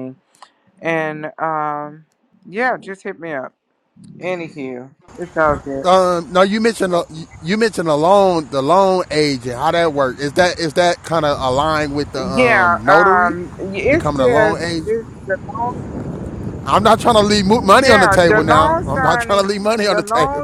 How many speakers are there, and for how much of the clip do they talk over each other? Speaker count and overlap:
2, about 23%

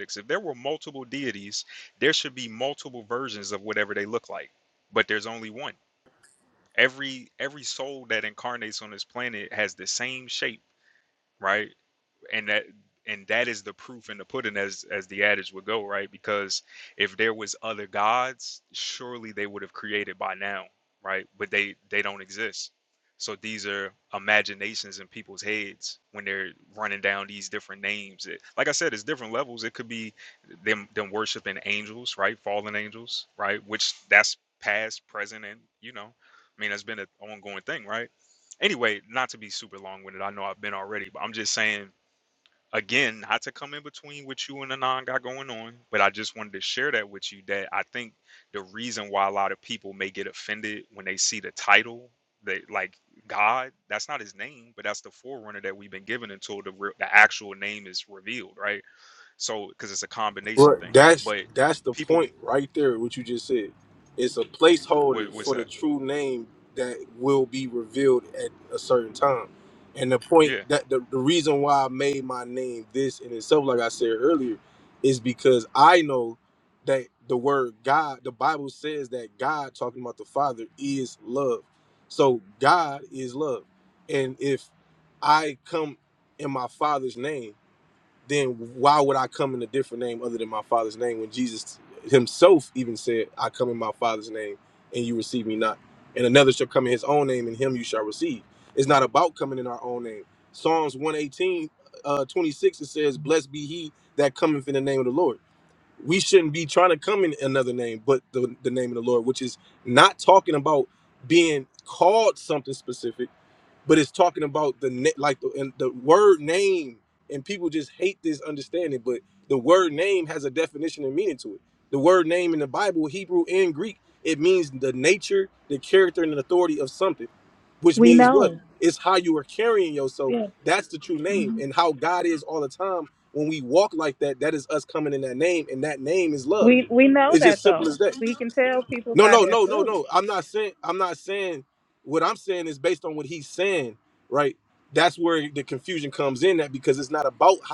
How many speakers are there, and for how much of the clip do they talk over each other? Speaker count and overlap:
3, about 3%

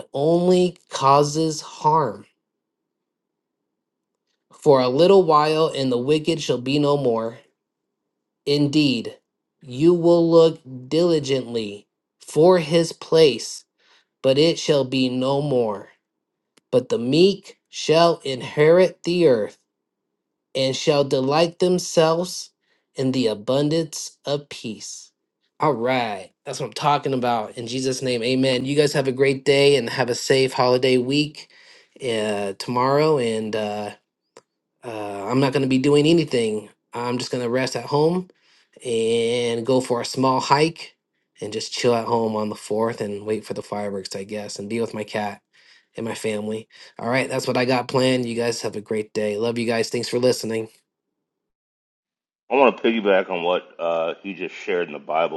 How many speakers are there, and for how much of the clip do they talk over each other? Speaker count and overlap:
2, no overlap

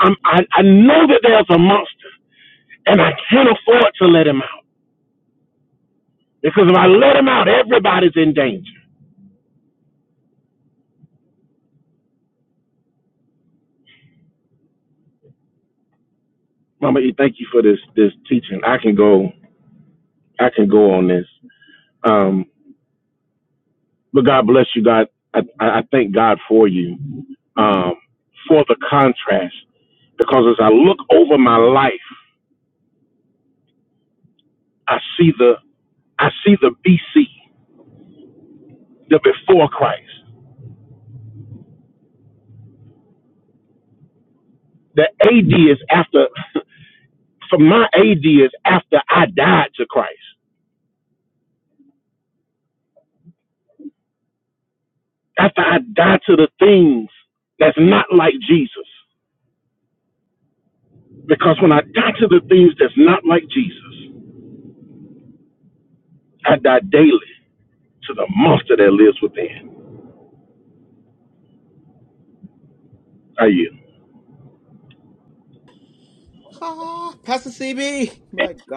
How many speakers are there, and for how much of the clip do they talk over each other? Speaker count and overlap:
2, no overlap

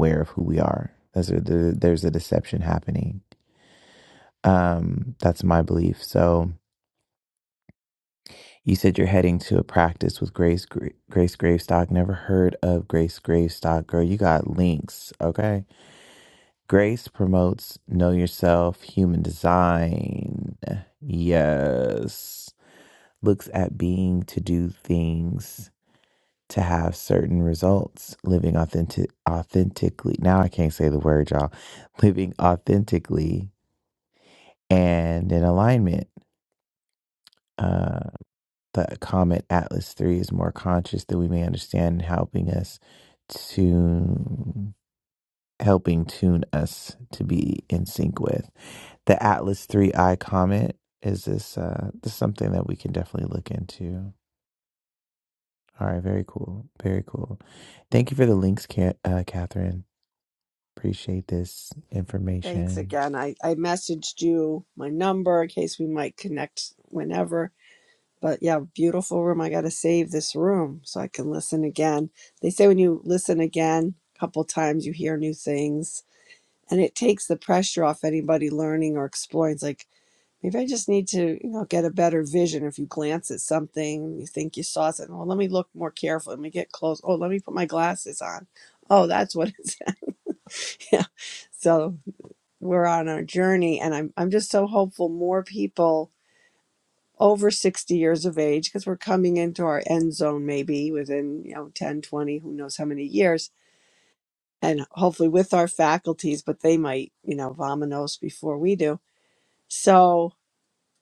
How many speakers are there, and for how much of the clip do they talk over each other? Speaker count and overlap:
2, under 1%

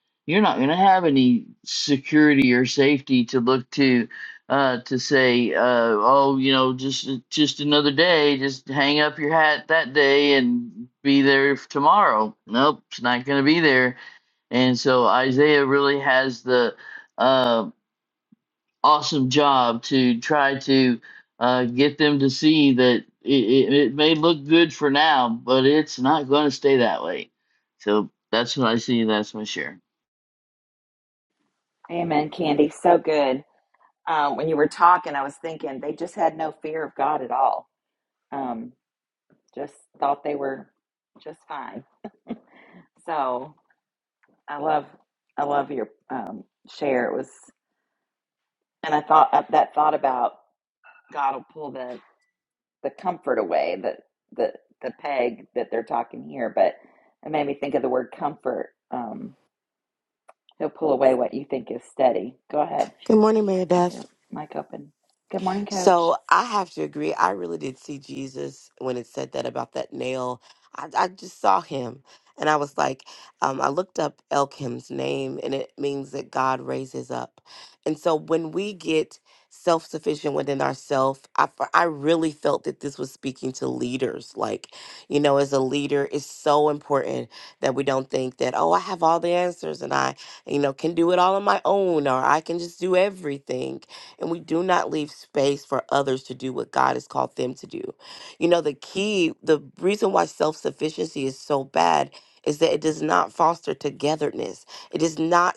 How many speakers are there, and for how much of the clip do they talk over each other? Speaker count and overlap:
3, about 1%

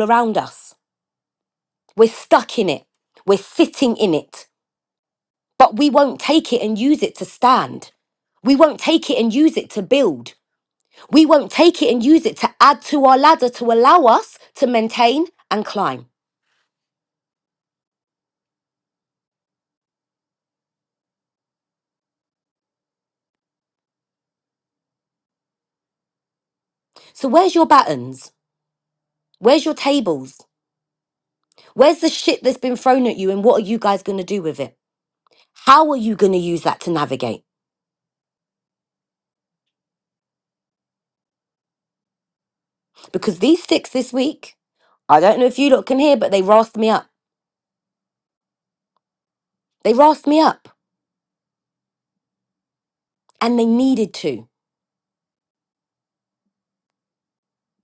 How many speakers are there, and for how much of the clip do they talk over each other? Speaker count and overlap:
1, no overlap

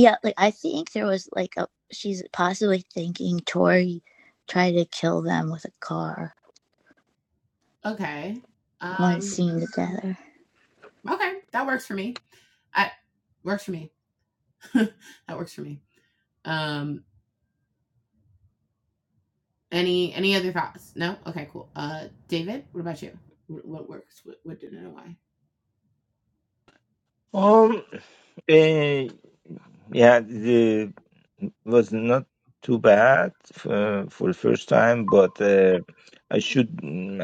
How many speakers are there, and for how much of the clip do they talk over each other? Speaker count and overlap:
3, about 1%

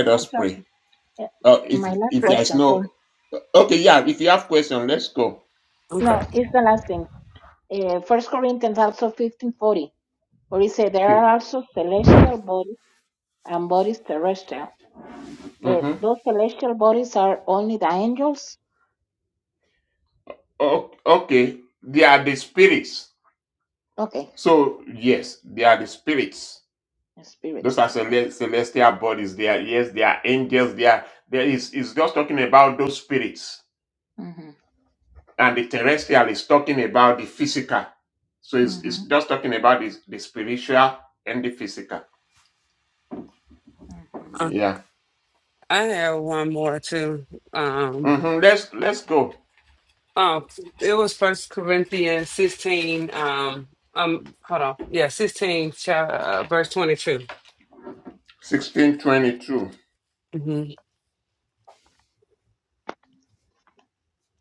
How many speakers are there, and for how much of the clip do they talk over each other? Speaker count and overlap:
3, about 5%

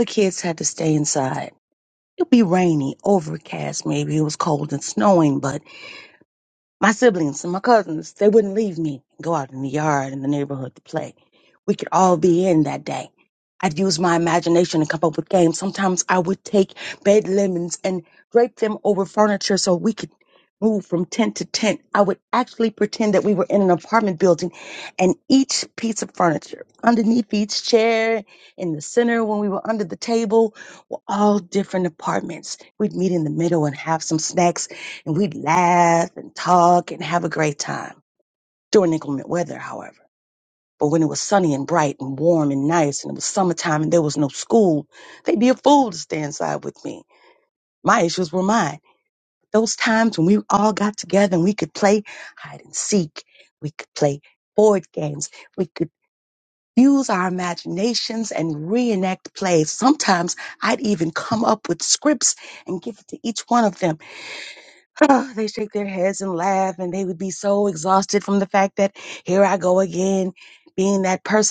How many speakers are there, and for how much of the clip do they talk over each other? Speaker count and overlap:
1, no overlap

